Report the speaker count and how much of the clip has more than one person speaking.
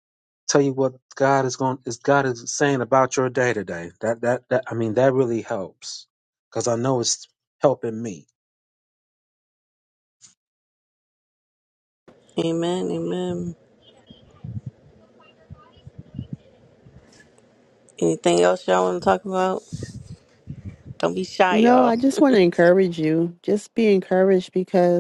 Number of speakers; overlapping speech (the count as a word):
three, about 2%